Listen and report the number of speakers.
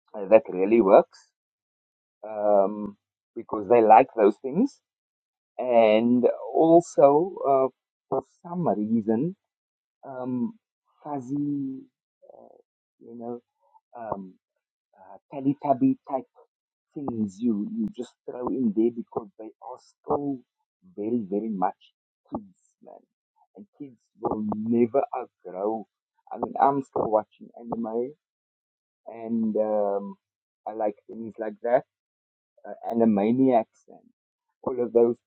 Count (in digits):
1